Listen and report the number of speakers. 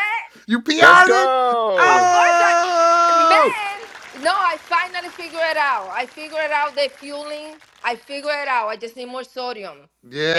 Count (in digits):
3